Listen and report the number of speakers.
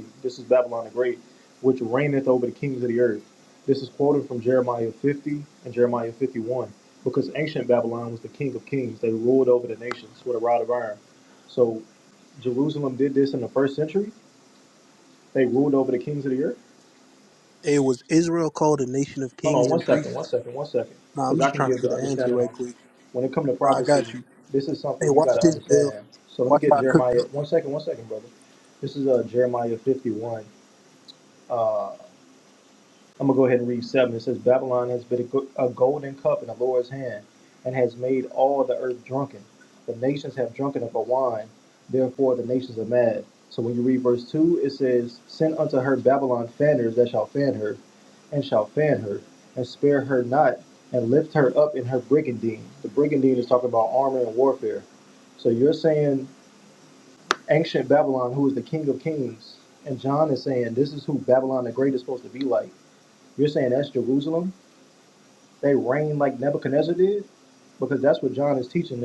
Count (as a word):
two